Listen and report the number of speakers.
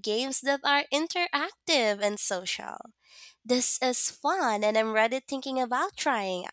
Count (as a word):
one